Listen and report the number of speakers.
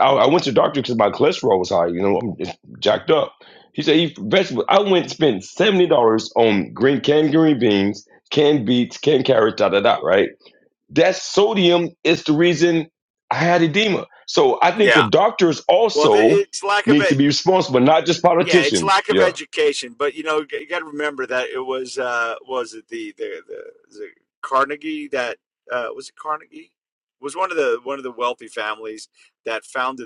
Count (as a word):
two